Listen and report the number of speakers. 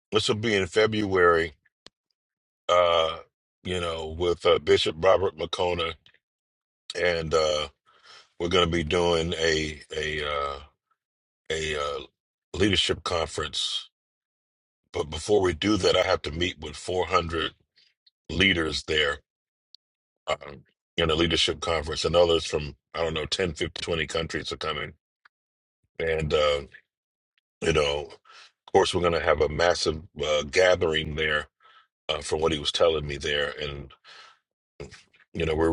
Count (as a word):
one